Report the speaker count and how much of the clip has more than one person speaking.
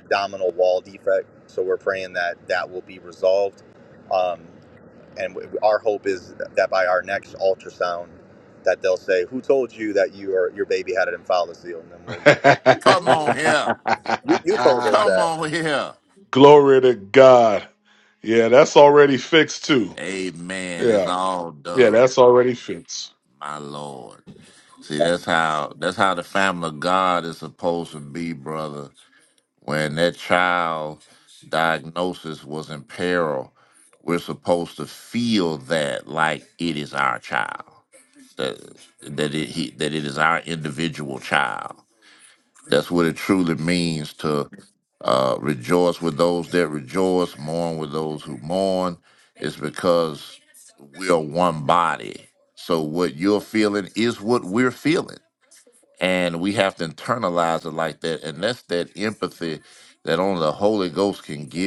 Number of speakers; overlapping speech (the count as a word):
three, about 2%